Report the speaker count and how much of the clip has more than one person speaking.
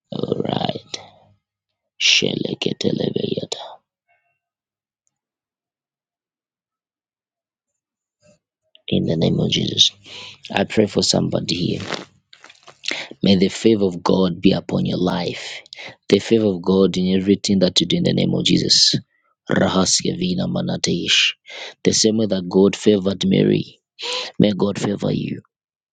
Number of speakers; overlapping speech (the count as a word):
one, no overlap